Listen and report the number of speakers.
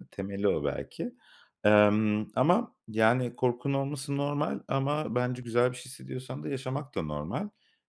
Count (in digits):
1